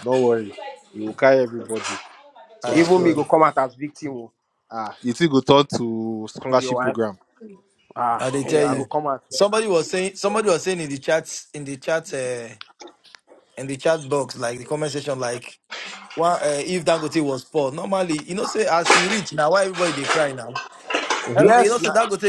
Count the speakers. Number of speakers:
three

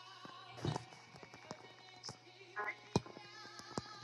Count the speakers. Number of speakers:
zero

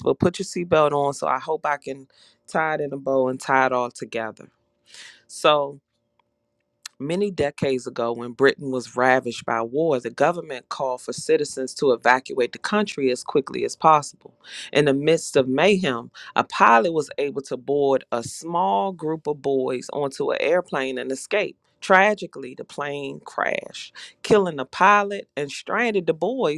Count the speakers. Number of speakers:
one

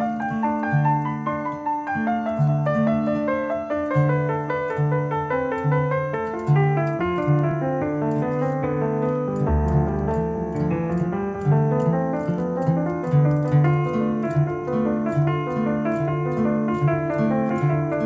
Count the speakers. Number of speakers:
zero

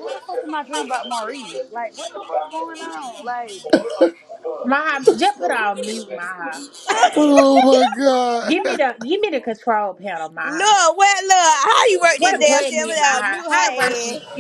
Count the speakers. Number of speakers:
four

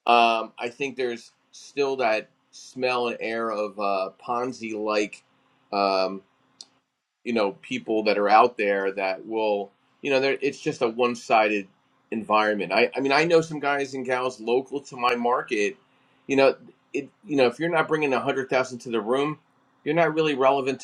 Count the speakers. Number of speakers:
one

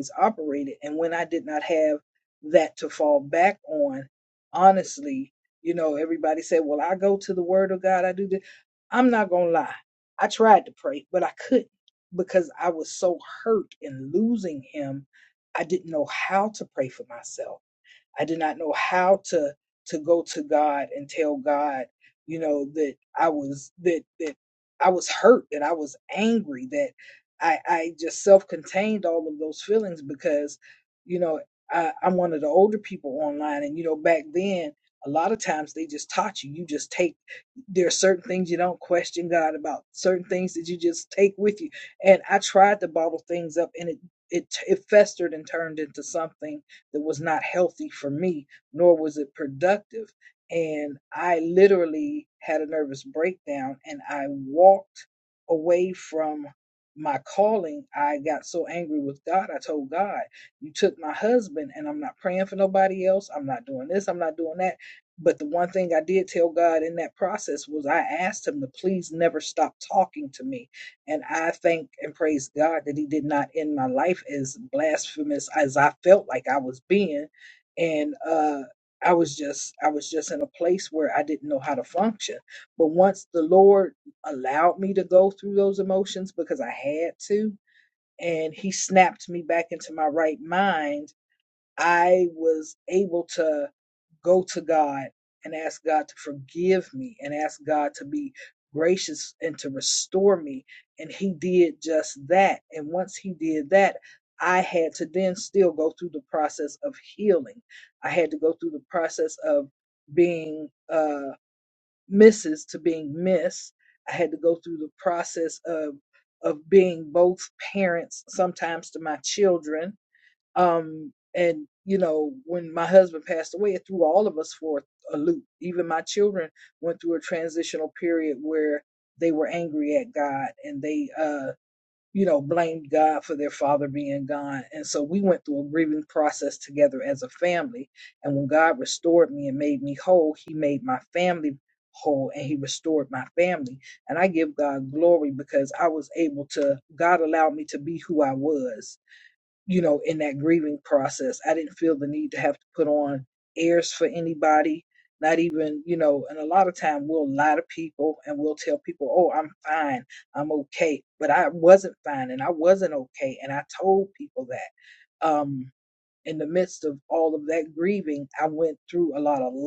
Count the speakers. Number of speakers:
one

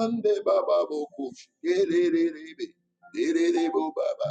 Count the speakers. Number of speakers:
one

